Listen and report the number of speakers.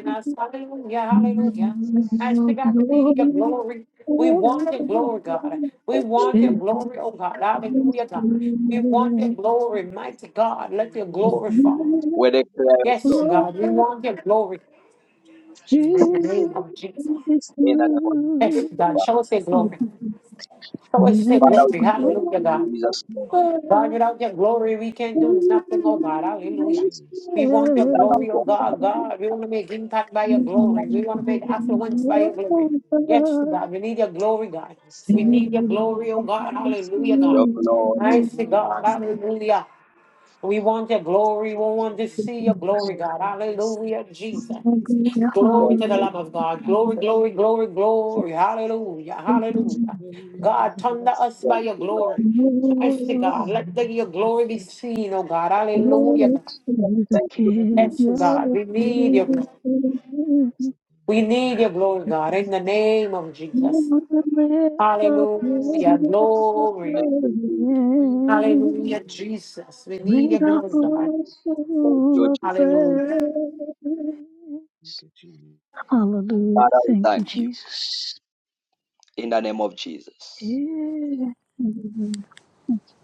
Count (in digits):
4